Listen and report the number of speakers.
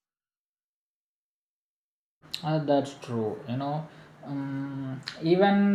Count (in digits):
1